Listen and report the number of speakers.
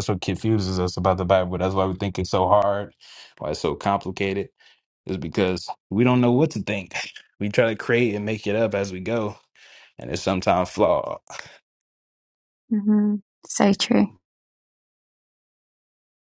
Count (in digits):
2